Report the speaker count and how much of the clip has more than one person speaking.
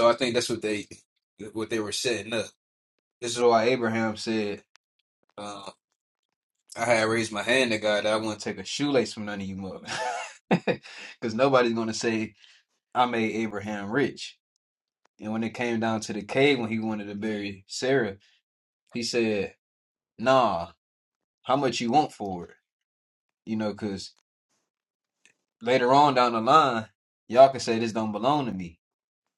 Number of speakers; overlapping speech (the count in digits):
1, no overlap